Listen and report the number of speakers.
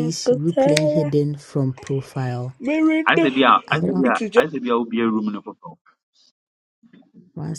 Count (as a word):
three